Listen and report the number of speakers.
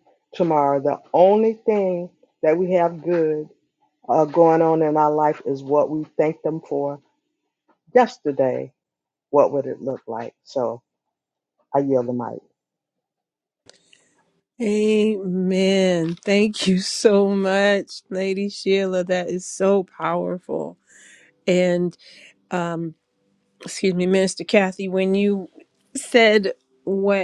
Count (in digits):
2